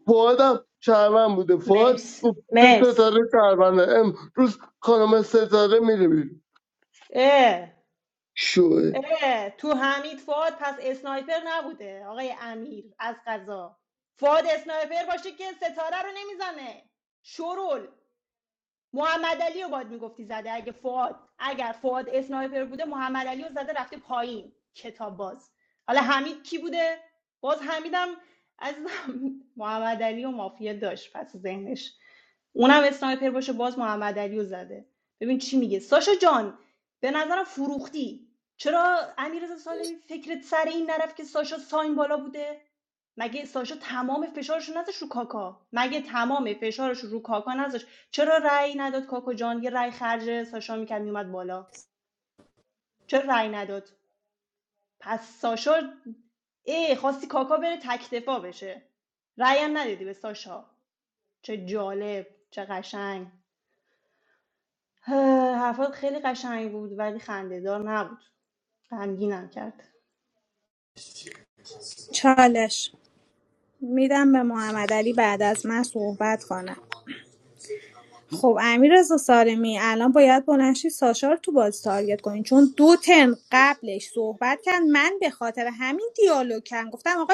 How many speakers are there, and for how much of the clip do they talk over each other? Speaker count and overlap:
3, about 2%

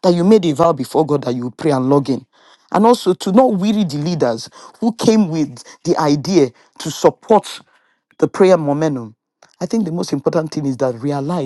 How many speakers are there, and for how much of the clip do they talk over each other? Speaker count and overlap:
1, no overlap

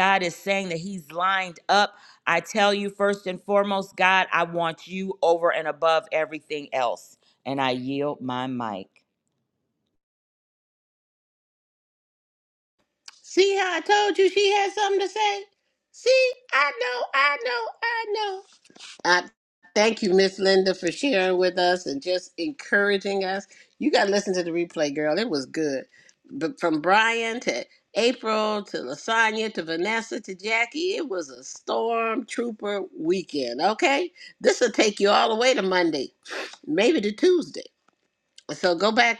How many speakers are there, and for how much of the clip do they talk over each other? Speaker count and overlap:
2, no overlap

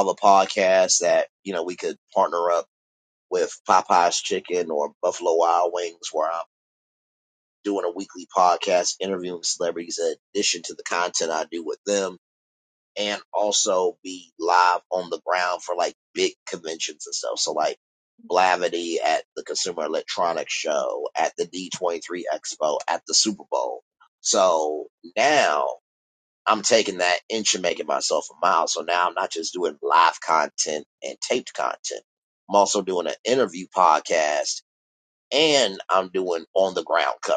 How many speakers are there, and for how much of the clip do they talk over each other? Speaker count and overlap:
1, no overlap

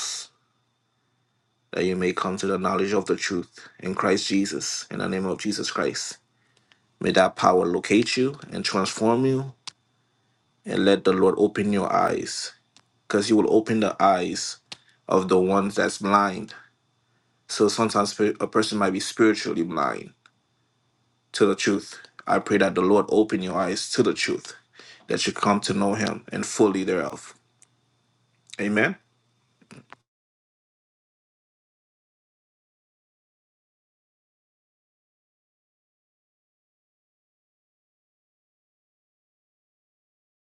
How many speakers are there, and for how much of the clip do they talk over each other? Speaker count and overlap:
1, no overlap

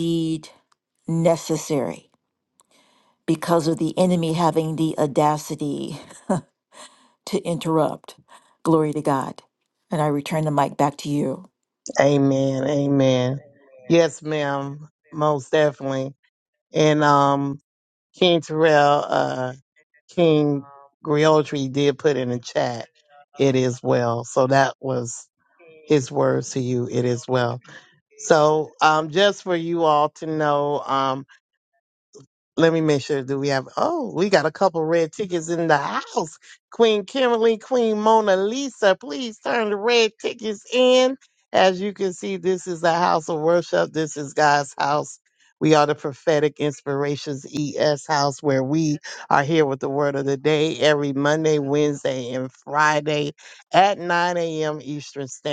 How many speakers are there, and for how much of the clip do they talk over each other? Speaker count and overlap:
2, no overlap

